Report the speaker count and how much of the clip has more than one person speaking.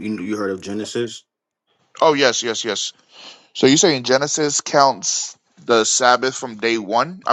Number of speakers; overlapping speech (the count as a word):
two, no overlap